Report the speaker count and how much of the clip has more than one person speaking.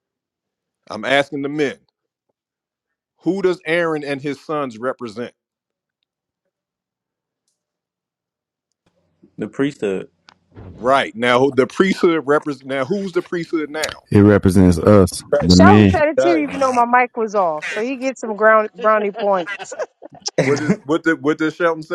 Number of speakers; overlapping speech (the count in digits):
4, about 6%